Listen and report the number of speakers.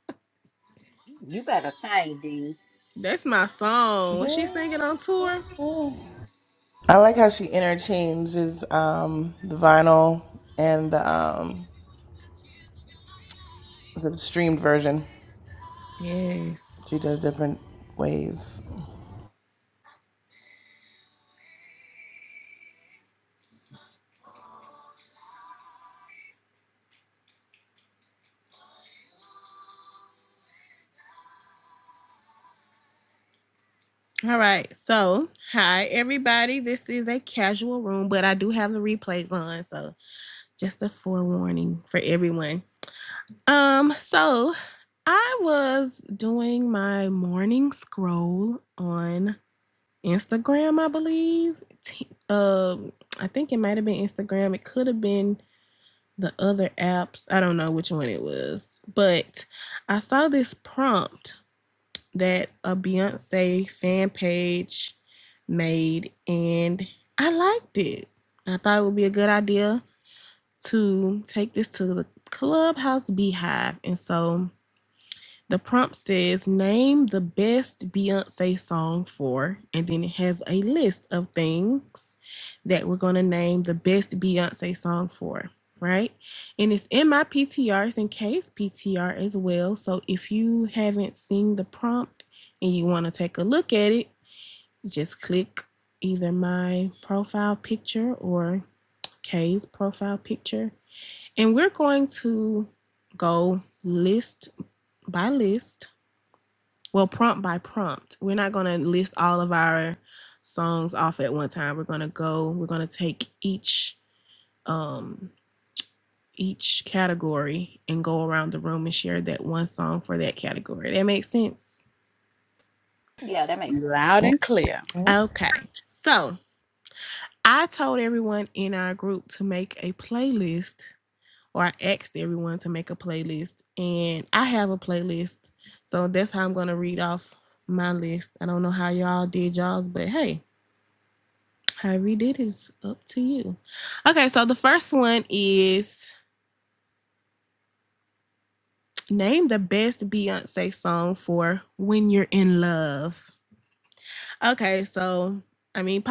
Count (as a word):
four